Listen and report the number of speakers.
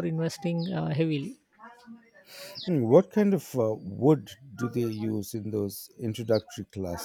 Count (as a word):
two